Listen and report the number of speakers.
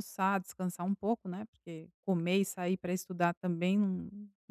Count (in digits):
1